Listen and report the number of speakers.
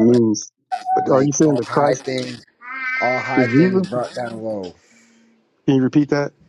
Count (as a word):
two